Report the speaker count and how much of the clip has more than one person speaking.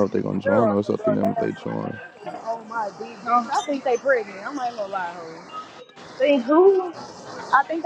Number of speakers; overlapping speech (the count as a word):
three, about 20%